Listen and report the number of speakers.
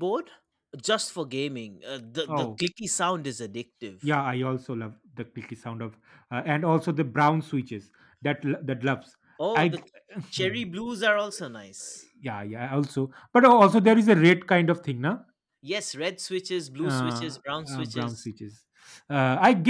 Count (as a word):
two